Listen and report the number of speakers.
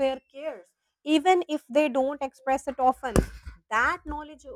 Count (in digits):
1